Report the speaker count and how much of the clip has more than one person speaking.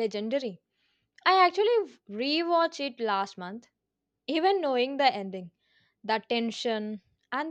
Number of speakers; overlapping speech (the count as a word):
one, no overlap